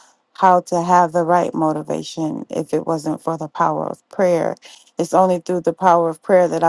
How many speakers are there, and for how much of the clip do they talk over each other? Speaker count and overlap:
1, no overlap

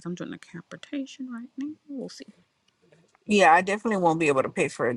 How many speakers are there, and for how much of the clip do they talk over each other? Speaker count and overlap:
2, no overlap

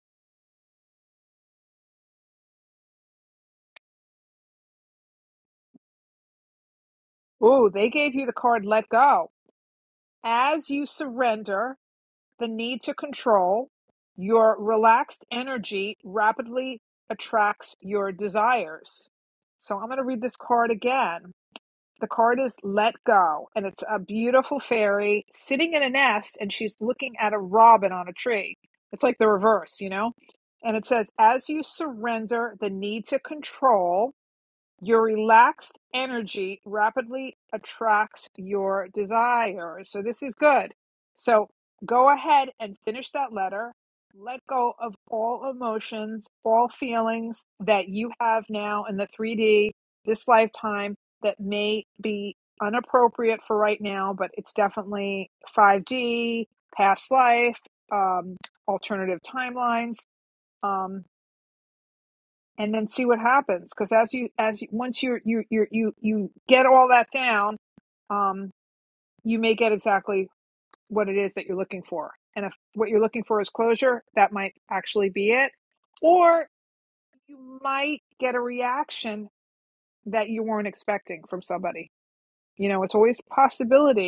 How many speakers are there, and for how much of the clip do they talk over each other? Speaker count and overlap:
1, no overlap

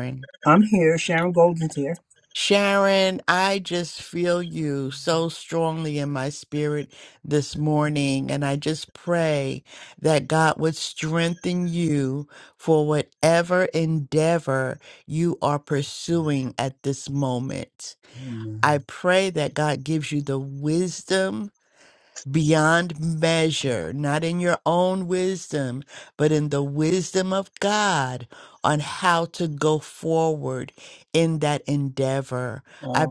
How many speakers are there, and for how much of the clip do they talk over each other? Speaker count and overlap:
2, about 1%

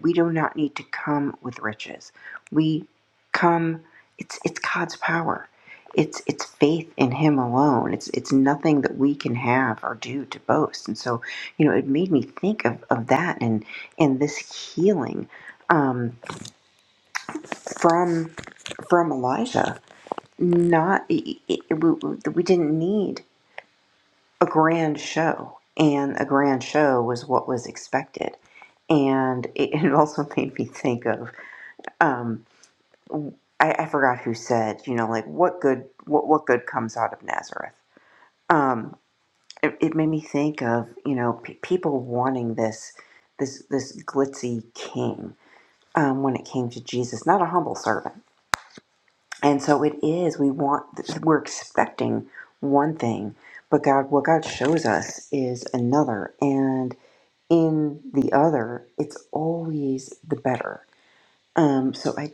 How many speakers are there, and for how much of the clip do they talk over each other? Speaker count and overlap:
1, no overlap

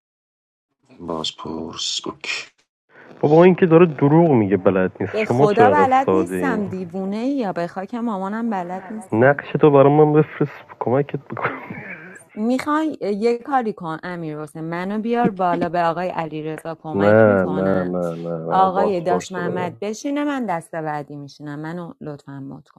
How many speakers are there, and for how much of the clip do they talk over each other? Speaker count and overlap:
3, about 18%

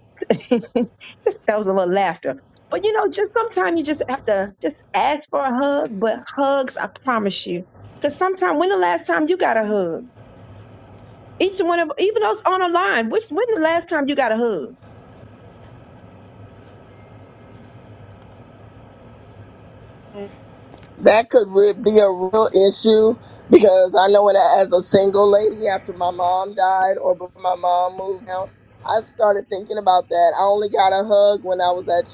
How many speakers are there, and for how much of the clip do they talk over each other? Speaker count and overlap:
2, no overlap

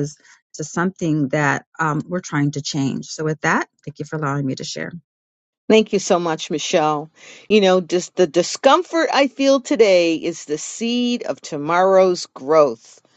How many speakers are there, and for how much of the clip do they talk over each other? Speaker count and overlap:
2, no overlap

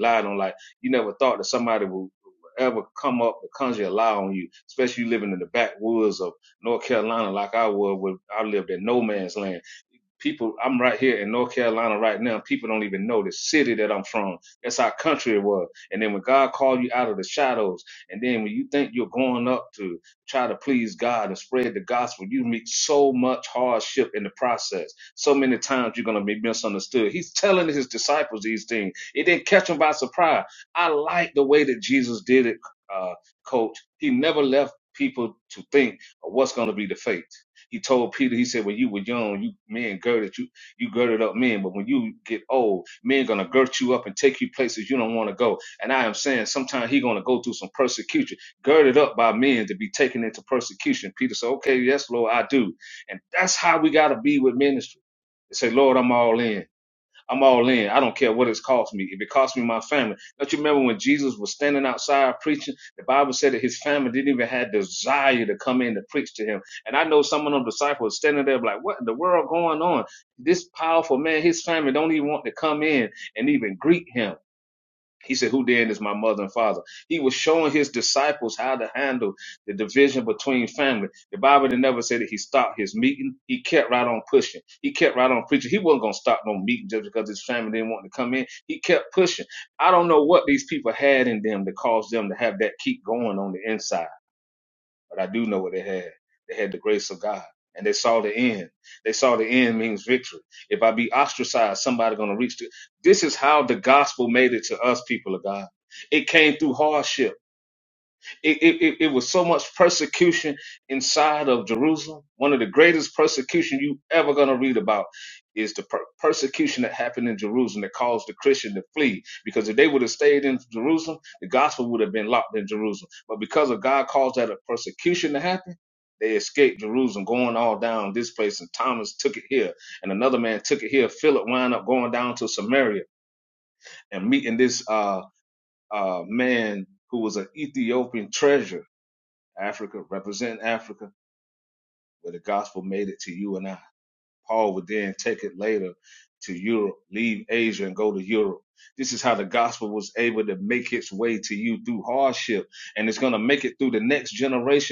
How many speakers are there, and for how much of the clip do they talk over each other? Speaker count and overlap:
1, no overlap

